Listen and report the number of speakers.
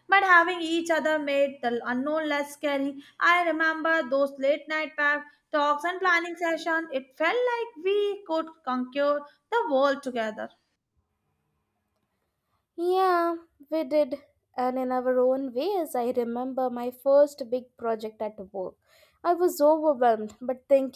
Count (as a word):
two